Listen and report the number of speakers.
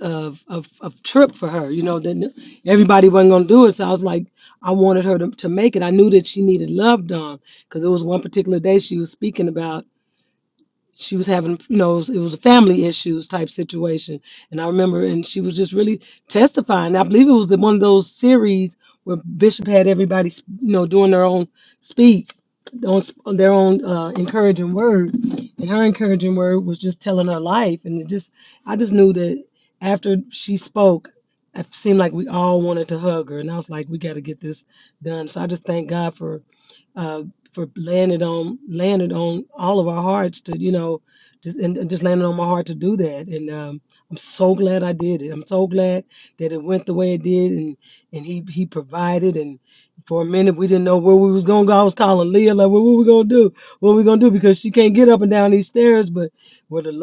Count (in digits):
1